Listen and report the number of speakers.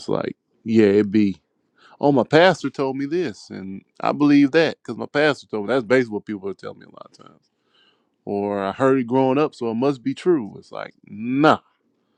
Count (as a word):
one